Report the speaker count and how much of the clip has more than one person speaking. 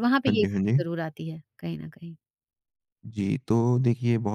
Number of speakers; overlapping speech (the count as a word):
two, about 13%